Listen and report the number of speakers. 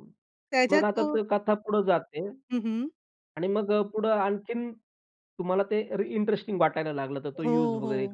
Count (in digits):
2